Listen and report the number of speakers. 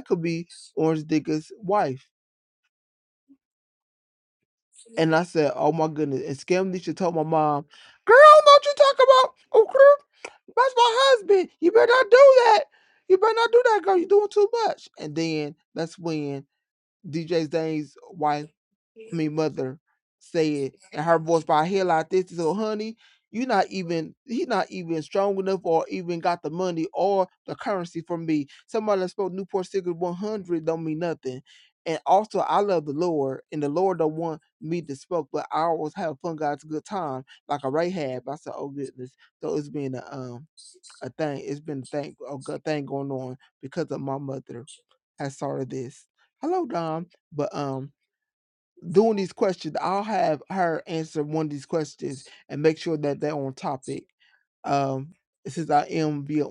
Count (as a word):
one